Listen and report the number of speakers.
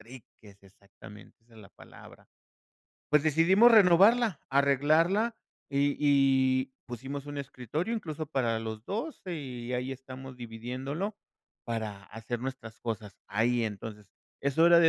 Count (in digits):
1